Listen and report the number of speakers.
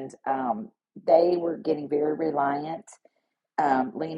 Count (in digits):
1